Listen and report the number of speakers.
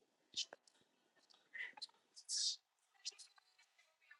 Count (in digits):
0